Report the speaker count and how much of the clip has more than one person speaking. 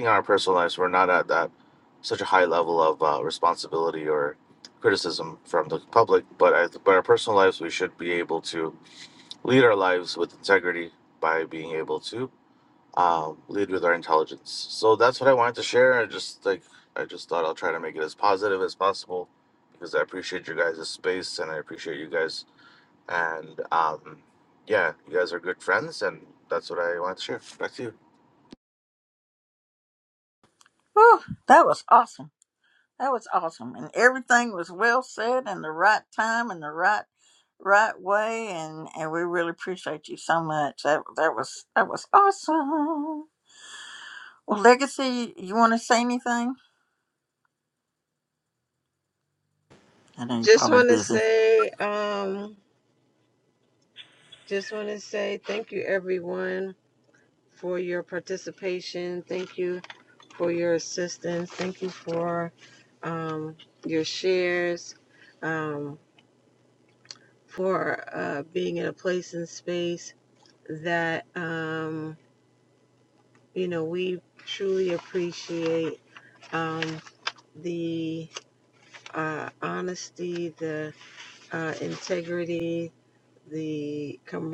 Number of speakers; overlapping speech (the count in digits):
3, about 1%